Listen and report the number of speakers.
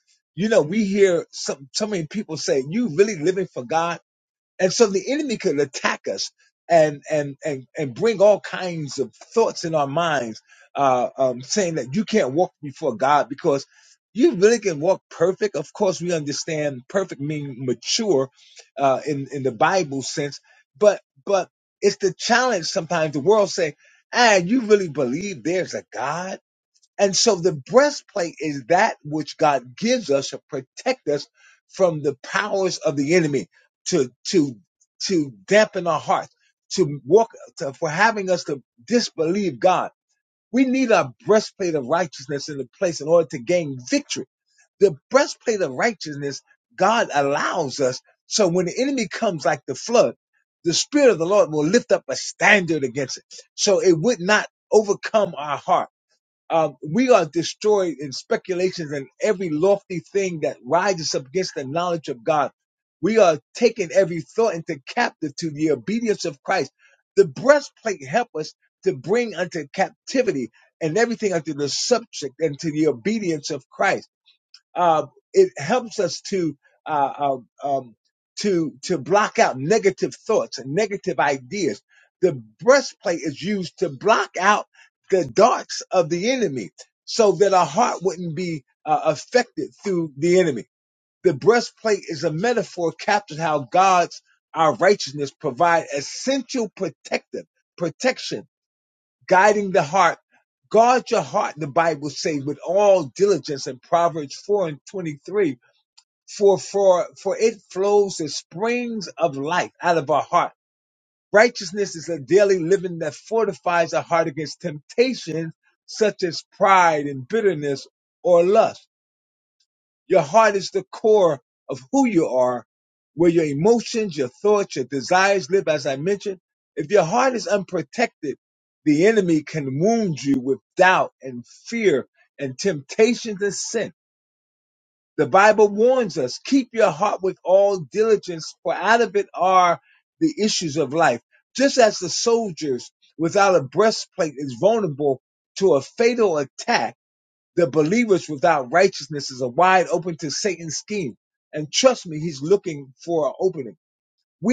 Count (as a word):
one